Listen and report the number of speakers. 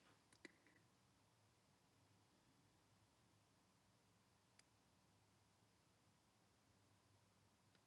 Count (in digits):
0